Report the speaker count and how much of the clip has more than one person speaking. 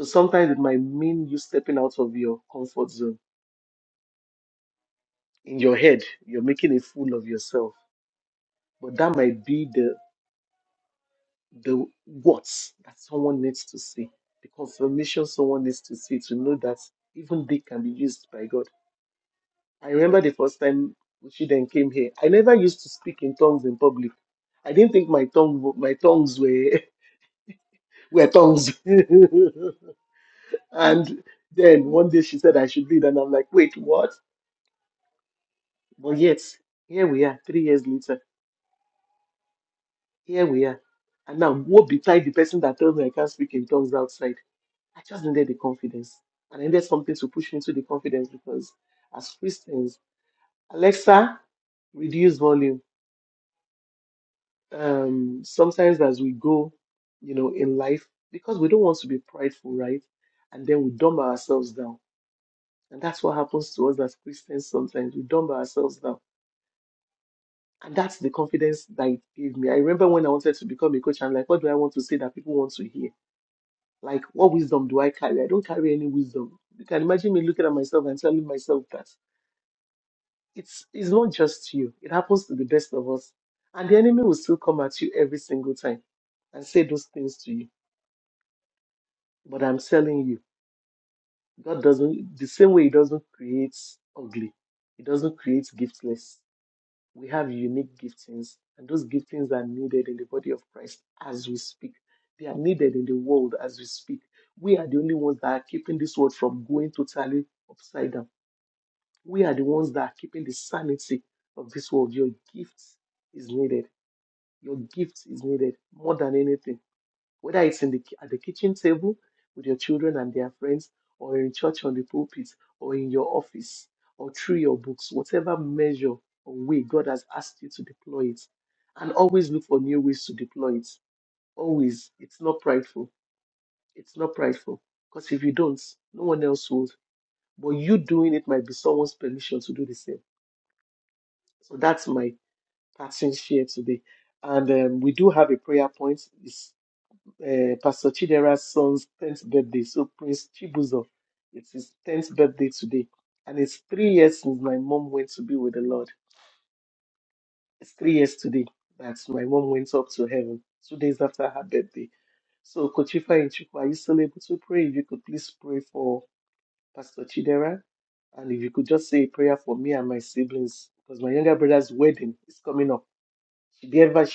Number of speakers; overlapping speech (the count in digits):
1, no overlap